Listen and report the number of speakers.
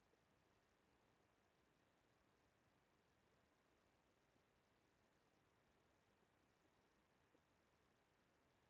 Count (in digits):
0